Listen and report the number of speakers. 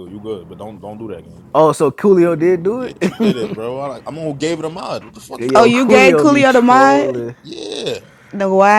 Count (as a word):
three